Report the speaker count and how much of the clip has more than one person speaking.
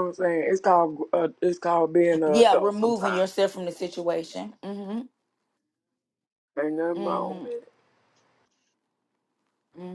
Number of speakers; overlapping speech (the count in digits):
2, about 15%